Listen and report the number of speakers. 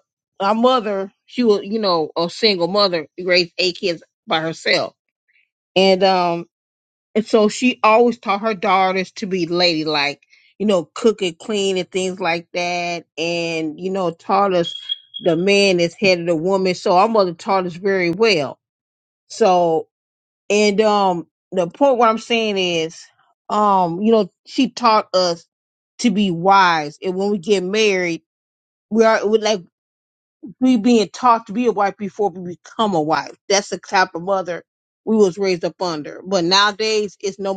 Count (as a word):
one